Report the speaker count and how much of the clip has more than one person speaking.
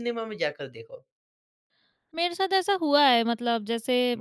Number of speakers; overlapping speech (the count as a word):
two, about 1%